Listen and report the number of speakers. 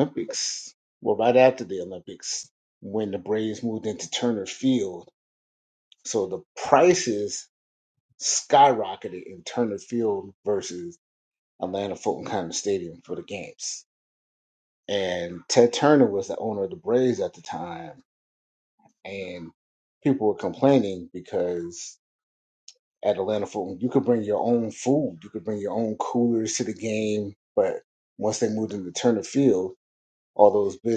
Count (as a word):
one